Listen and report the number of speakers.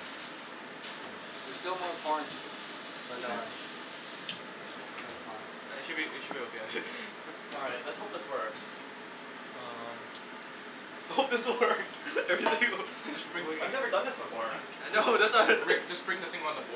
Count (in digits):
4